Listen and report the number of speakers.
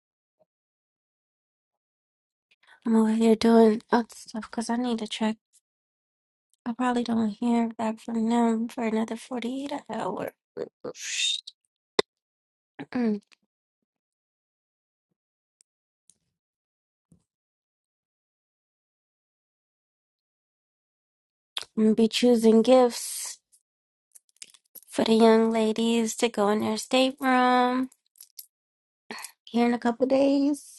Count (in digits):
1